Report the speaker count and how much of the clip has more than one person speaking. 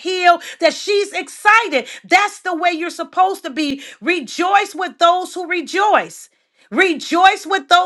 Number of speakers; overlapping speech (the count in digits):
1, no overlap